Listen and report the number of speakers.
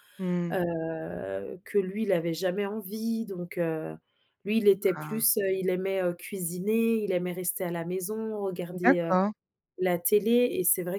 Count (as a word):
two